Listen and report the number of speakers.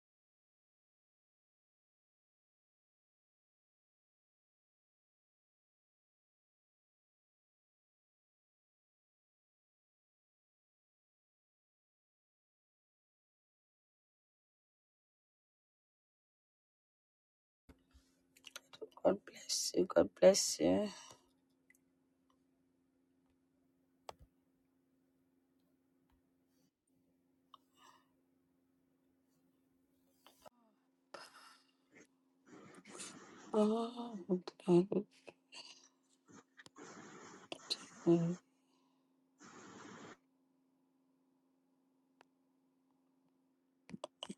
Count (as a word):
one